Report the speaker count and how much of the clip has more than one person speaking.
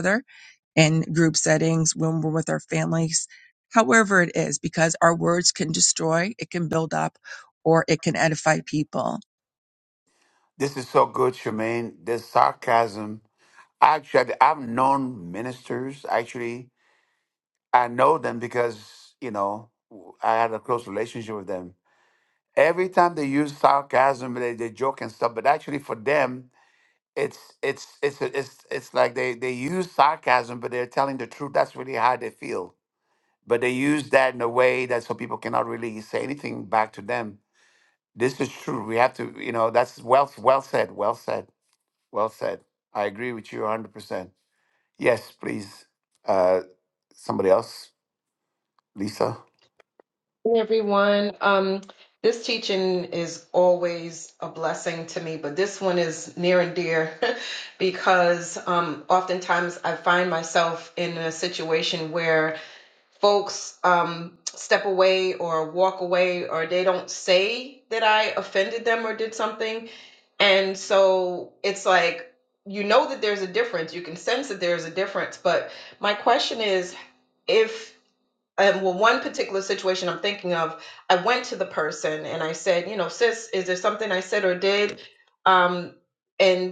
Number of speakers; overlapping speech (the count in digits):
3, no overlap